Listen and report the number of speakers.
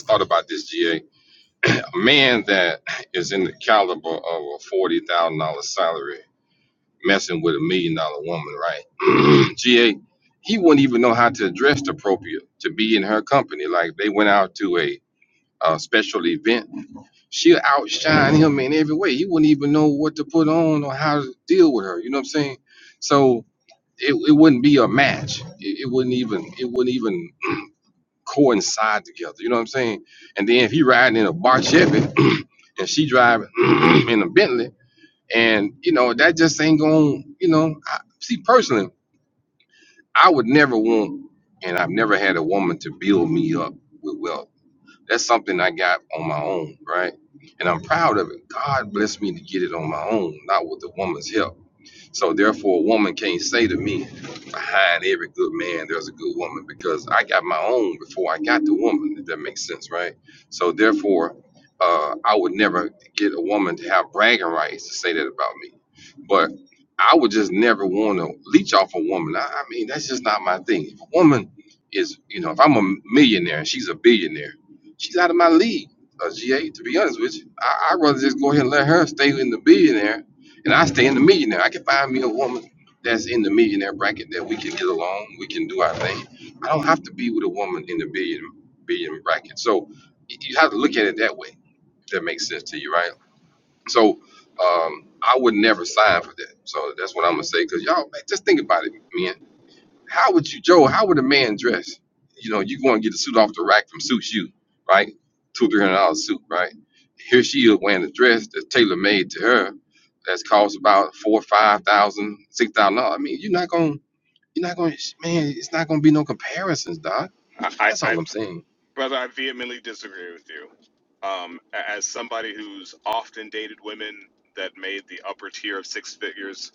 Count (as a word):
two